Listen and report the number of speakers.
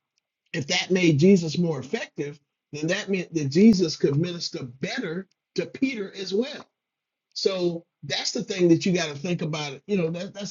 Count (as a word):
one